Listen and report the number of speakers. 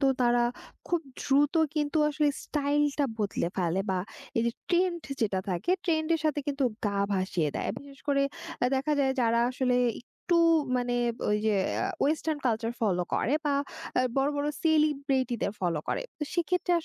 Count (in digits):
1